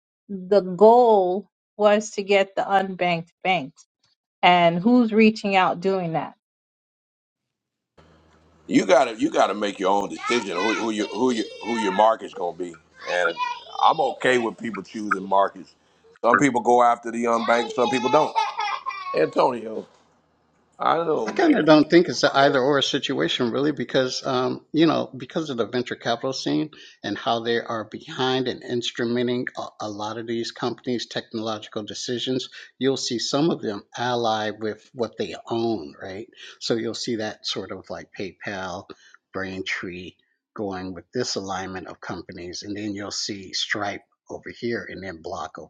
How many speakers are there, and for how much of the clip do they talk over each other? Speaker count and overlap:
3, about 1%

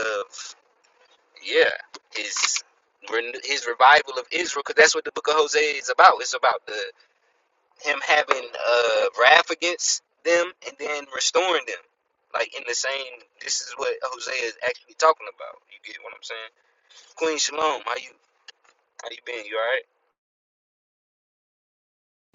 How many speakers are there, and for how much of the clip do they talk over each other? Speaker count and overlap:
1, no overlap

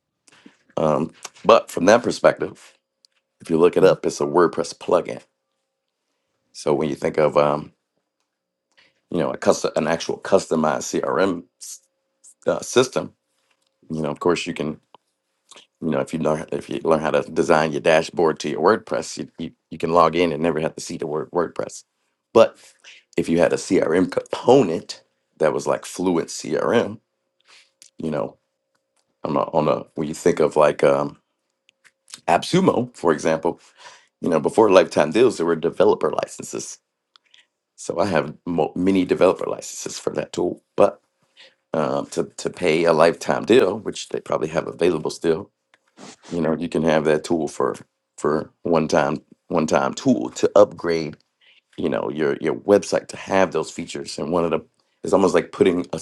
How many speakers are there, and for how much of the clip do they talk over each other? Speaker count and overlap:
1, no overlap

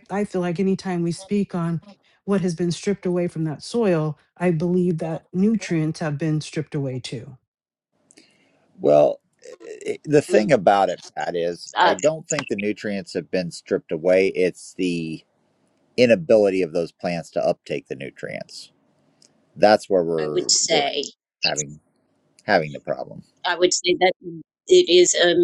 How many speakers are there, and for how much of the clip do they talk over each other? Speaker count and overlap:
3, about 4%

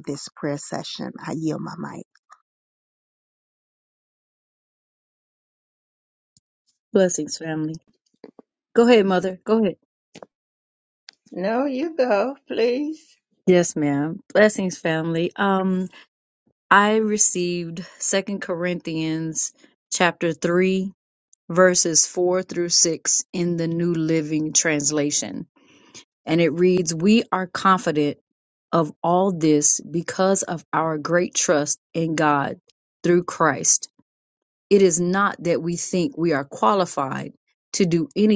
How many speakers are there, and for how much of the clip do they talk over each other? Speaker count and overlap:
3, no overlap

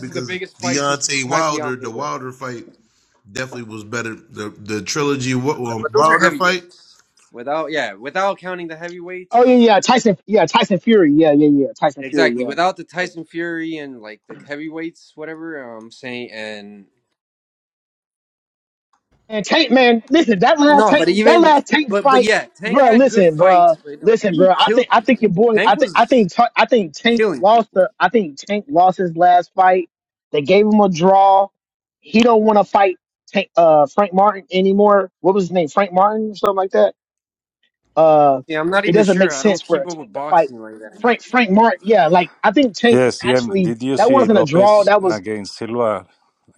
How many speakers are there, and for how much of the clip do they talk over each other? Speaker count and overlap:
4, about 28%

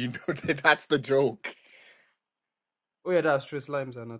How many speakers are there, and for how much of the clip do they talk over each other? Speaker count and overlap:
2, no overlap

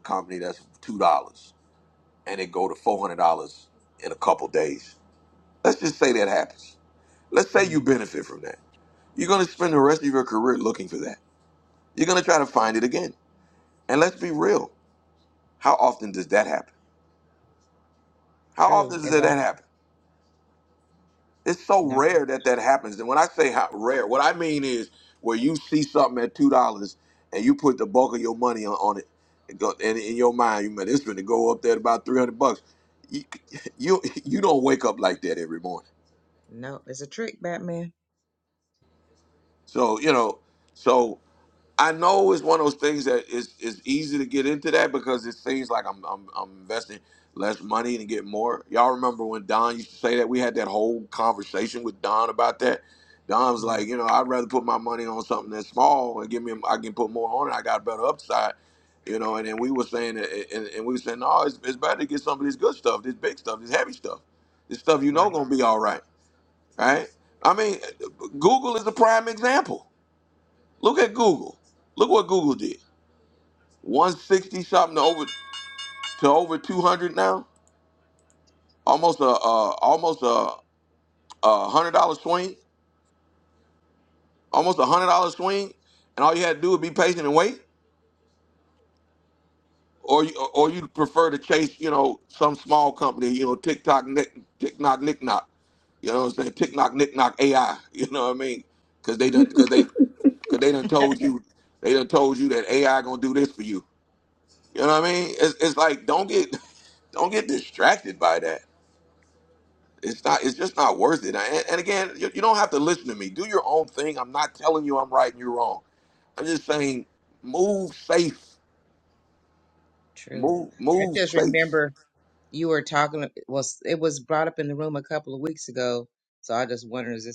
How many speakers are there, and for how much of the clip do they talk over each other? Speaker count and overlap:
2, about 2%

